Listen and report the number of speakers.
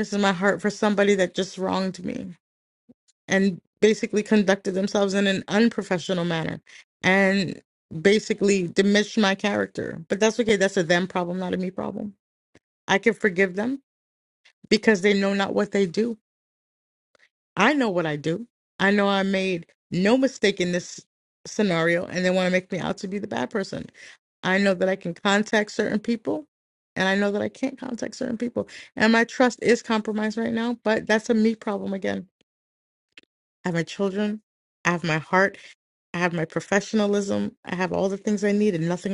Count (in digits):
1